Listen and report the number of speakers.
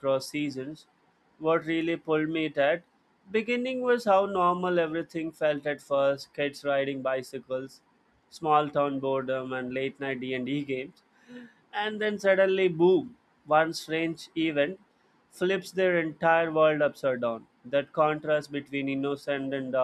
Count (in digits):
1